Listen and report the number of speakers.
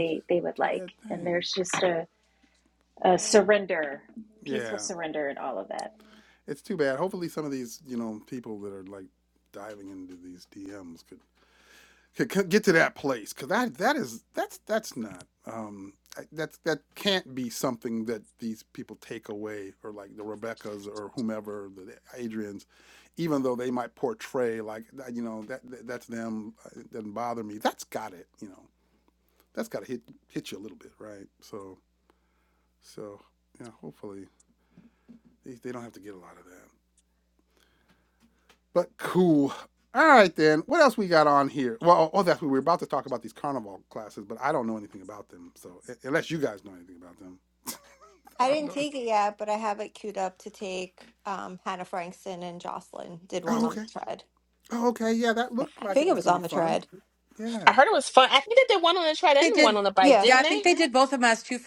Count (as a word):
five